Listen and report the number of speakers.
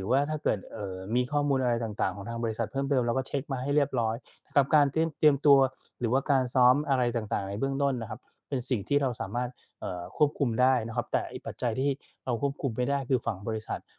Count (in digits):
1